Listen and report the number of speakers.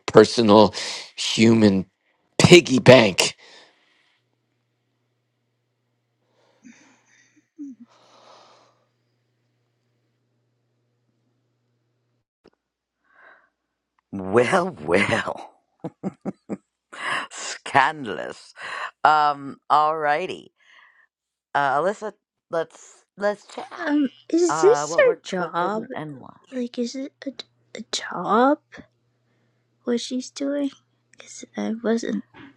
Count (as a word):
three